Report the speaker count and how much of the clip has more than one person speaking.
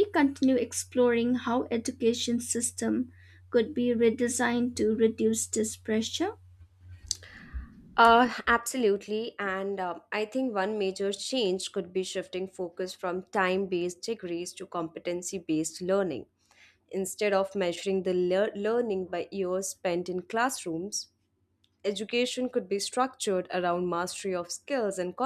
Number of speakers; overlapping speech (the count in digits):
2, no overlap